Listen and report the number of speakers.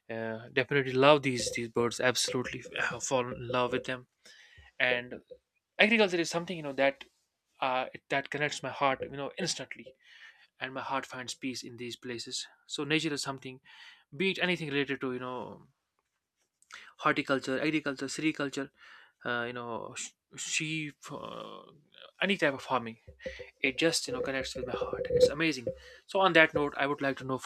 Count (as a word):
one